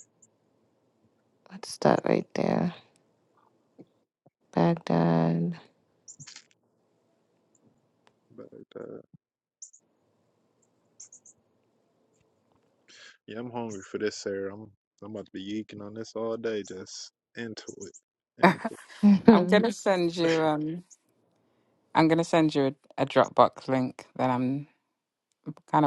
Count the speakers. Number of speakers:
3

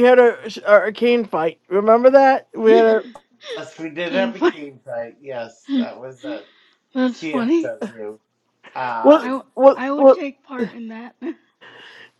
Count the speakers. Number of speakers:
3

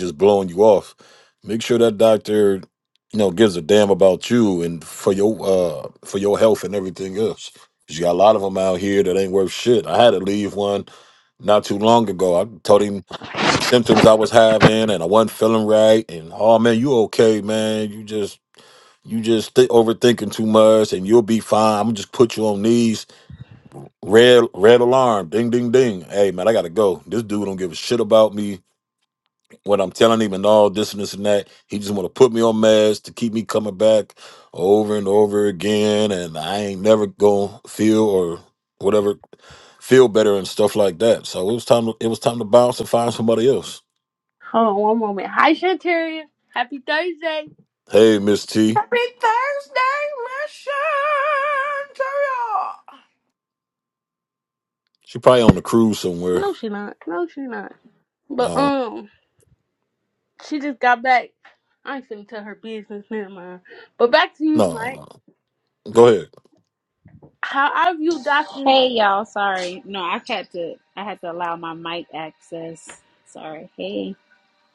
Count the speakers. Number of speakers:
4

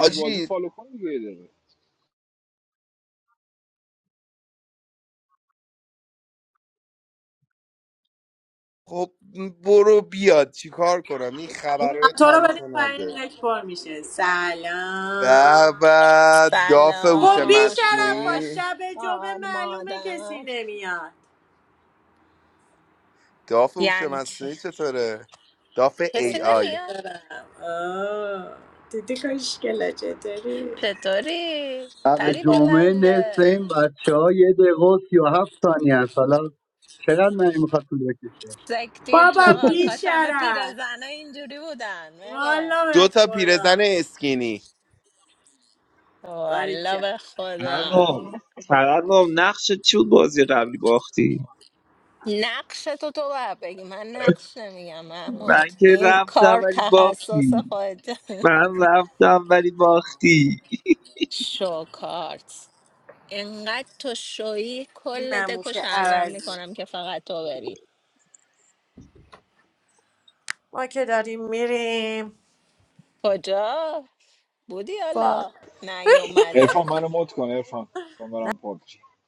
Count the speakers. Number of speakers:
6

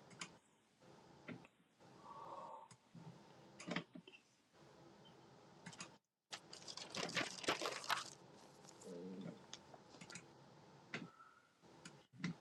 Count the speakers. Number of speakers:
0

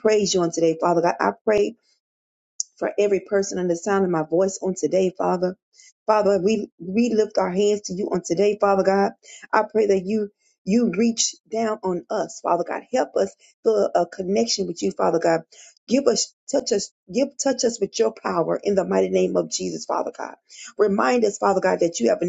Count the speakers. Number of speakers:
1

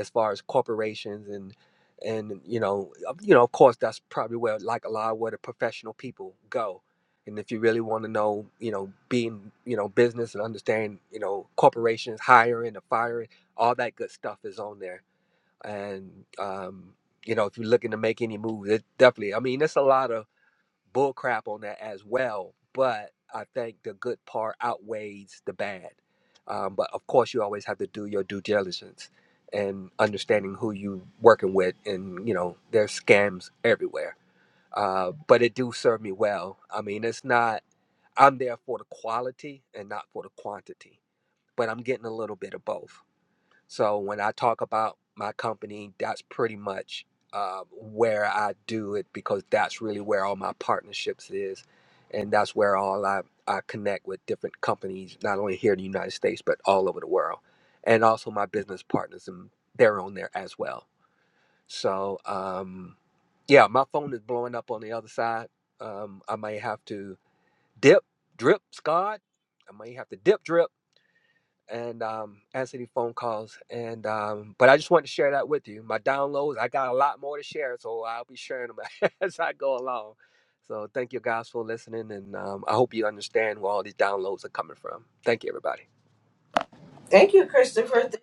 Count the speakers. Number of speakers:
2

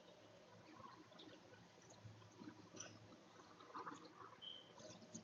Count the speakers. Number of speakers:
0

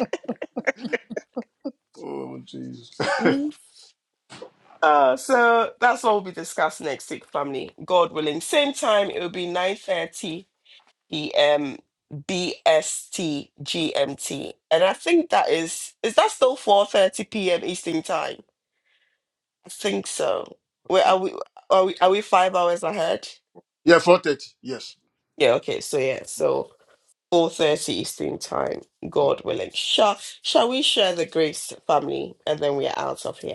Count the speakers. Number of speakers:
2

